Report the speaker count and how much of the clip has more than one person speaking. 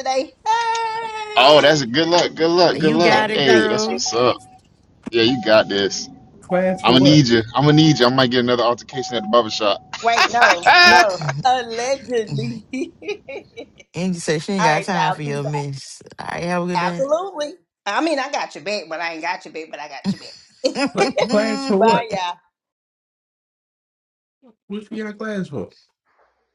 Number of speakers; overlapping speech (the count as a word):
four, about 13%